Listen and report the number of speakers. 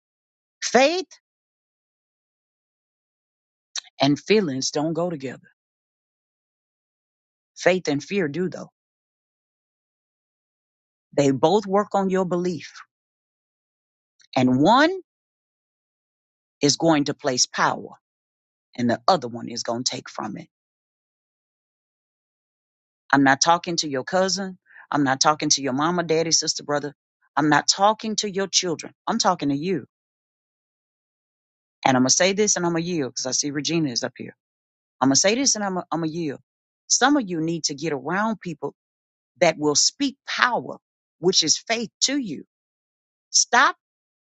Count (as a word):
one